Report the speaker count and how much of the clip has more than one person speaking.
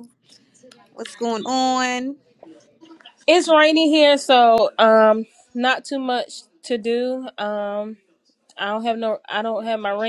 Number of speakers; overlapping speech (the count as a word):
two, no overlap